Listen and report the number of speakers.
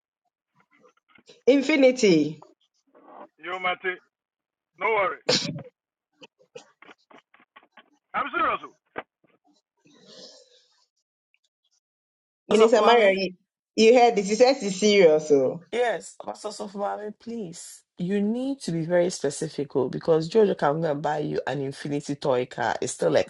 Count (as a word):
three